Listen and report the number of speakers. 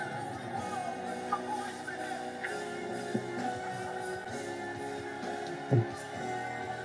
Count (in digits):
0